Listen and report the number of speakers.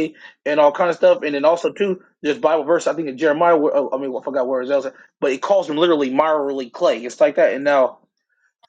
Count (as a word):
one